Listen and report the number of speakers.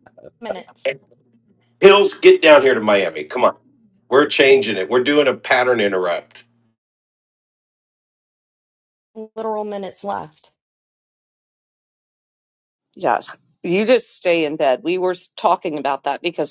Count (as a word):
three